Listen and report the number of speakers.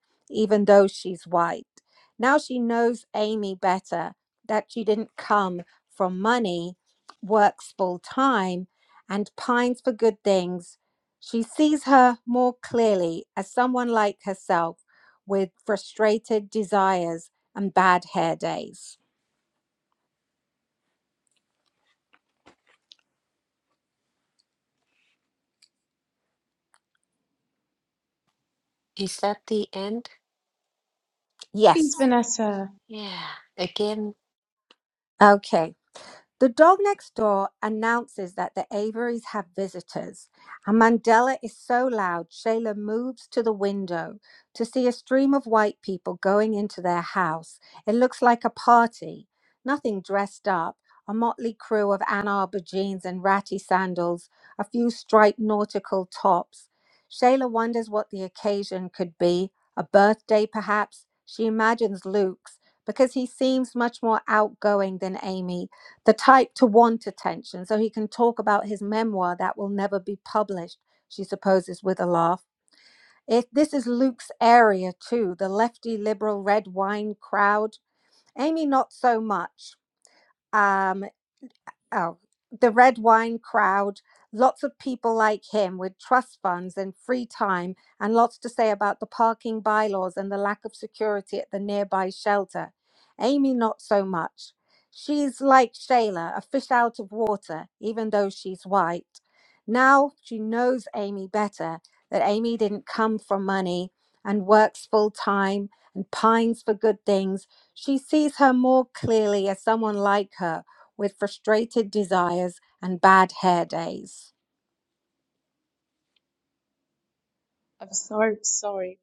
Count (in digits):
3